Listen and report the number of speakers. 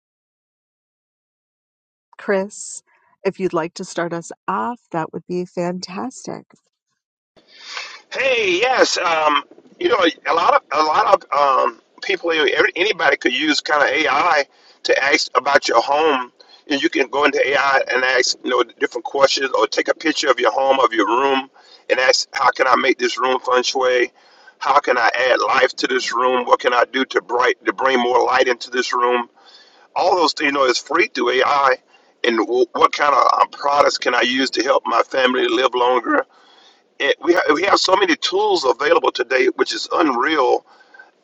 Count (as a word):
two